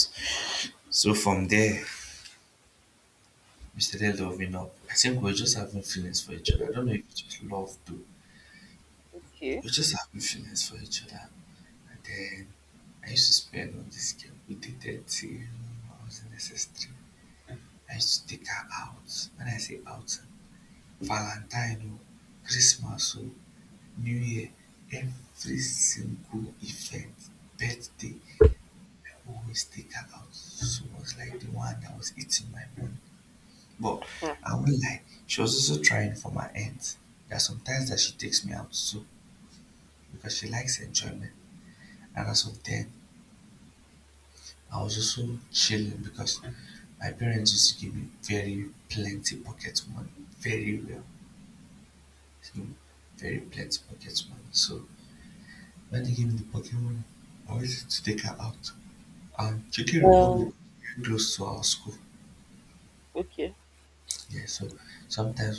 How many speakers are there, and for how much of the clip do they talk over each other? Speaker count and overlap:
2, about 1%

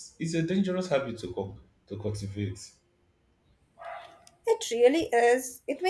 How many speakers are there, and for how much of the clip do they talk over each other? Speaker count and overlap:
2, no overlap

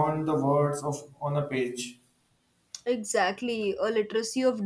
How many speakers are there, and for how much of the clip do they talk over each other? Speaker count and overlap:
2, no overlap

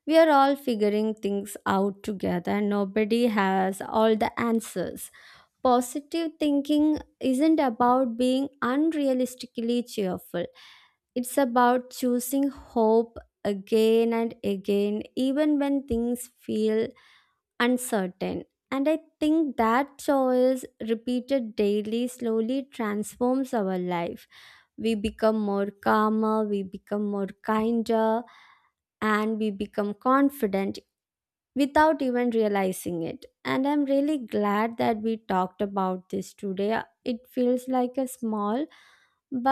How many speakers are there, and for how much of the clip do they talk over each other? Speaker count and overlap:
1, no overlap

